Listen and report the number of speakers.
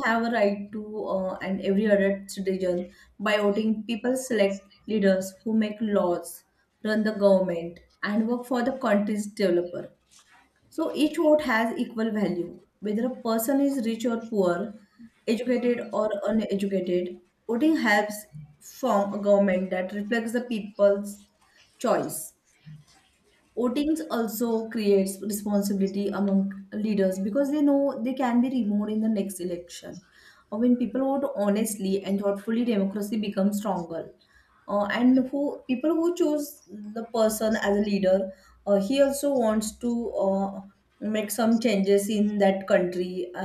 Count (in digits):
1